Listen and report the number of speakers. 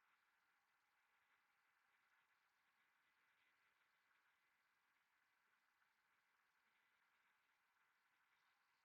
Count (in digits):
0